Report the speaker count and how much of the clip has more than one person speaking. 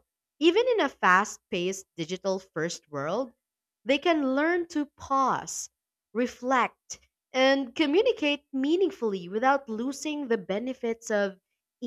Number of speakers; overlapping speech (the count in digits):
1, no overlap